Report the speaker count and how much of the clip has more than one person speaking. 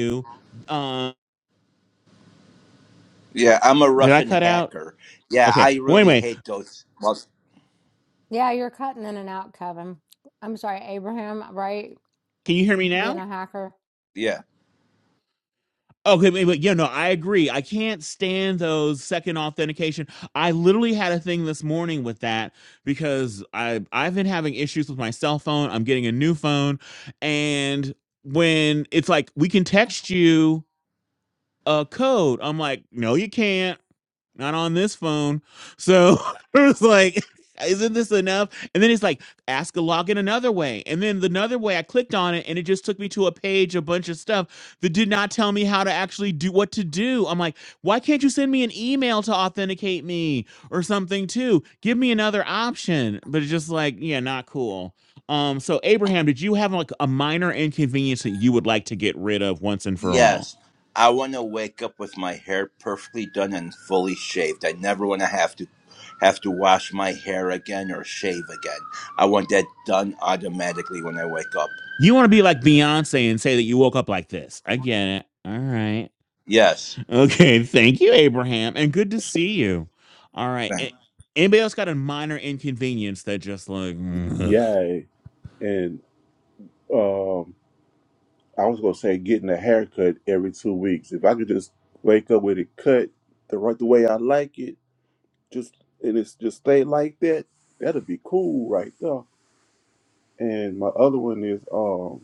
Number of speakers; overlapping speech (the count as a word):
four, about 2%